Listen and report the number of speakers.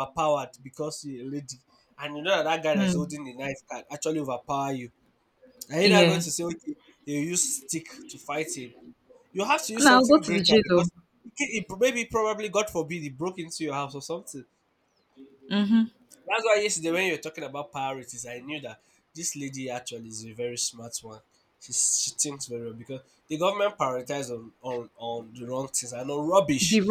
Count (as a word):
two